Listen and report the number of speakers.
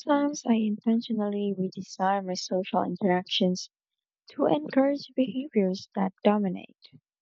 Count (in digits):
1